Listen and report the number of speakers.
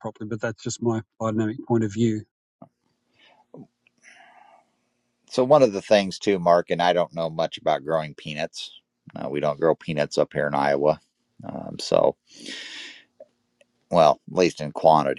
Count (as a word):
two